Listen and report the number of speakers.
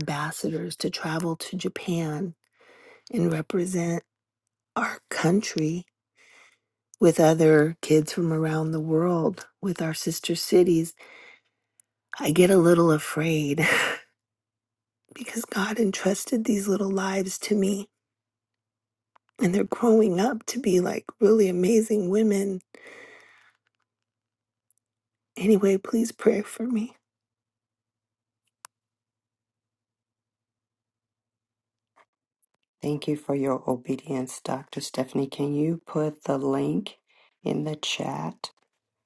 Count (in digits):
2